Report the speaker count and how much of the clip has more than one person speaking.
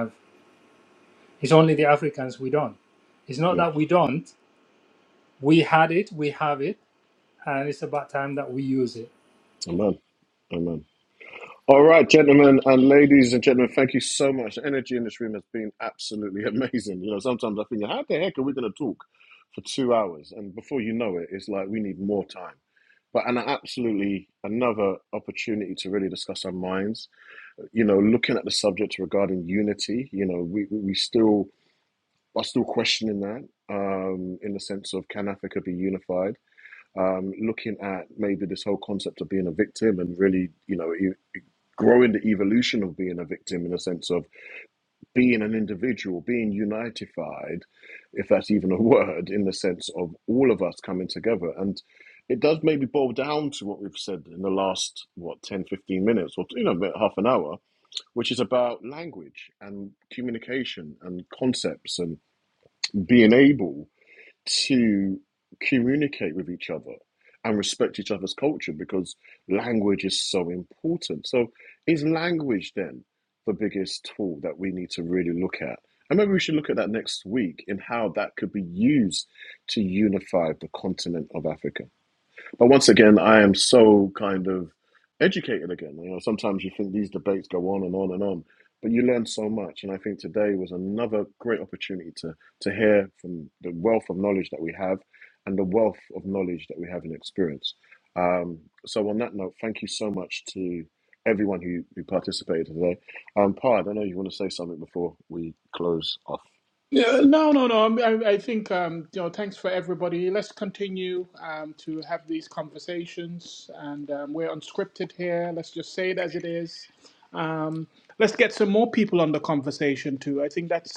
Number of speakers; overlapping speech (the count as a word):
three, under 1%